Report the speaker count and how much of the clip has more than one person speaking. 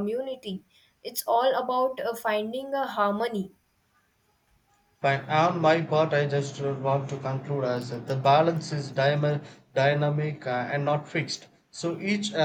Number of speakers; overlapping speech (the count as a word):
two, no overlap